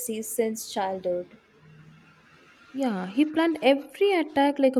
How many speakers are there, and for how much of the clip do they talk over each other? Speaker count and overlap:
two, no overlap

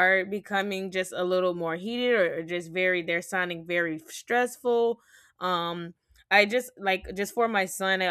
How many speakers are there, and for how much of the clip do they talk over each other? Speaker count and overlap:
one, no overlap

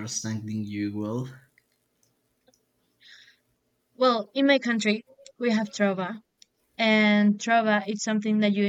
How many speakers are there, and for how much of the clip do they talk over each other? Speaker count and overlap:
two, no overlap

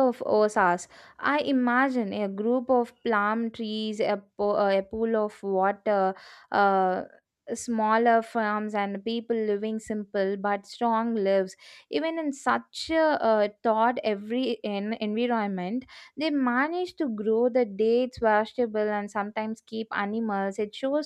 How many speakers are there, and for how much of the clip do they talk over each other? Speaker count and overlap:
one, no overlap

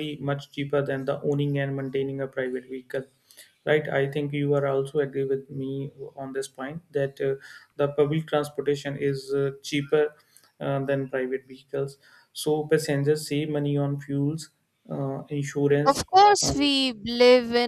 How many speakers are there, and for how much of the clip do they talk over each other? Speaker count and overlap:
two, about 2%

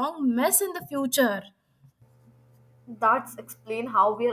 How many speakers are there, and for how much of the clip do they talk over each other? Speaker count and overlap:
two, no overlap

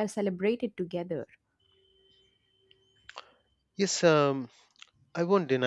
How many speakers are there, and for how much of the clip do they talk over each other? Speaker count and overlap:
two, no overlap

